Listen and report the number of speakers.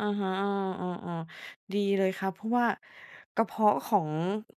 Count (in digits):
1